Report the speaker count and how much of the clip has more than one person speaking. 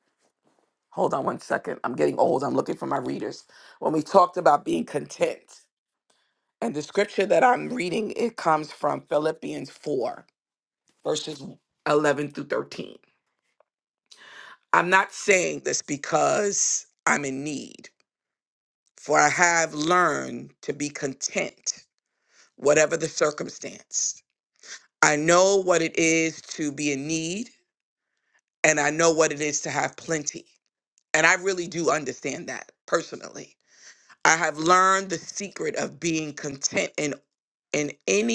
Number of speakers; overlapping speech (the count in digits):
1, no overlap